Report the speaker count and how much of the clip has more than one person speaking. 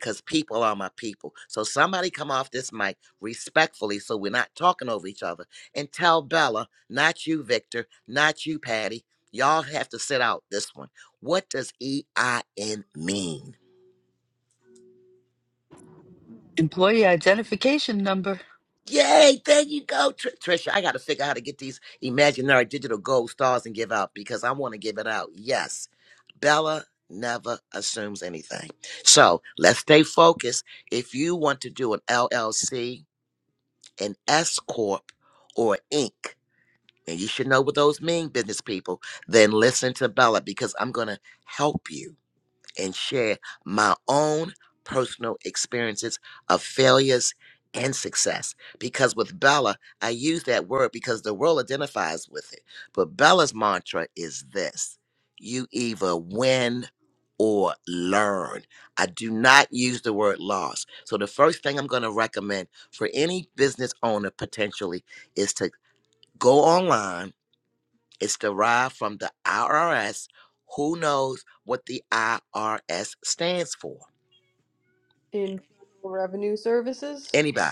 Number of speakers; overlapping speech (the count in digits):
3, no overlap